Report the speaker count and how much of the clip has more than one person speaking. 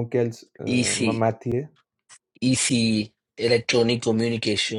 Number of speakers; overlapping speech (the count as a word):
two, about 6%